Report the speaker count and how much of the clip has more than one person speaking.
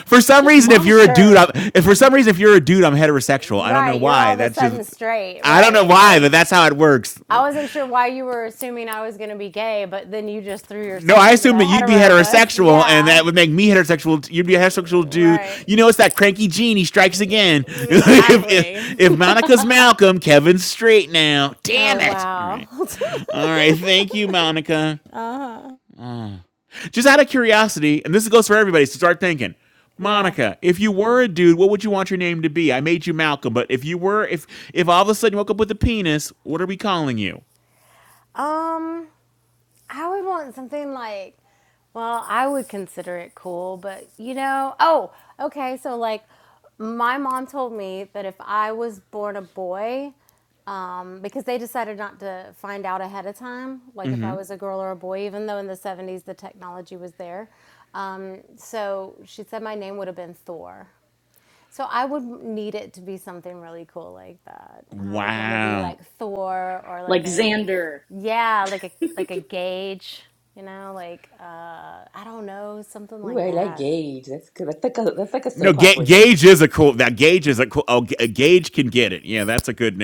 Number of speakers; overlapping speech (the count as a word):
four, about 15%